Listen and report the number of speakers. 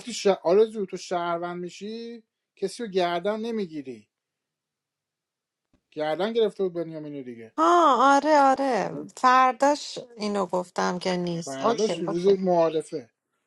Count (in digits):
2